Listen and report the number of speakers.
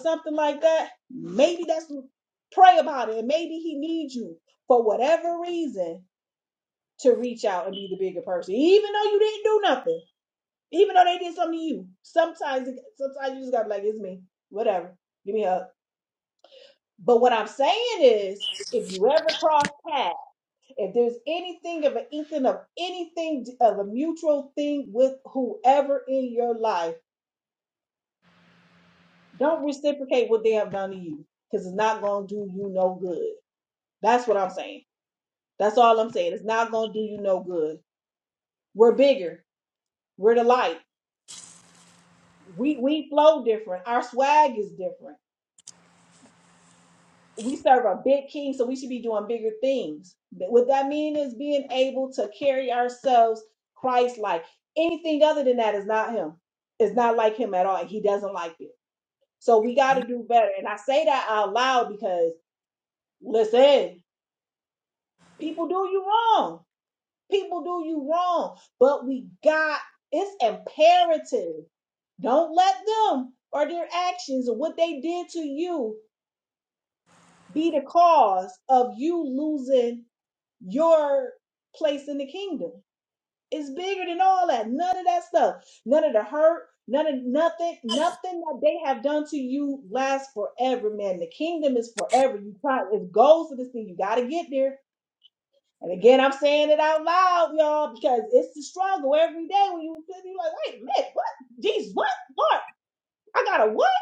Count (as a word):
one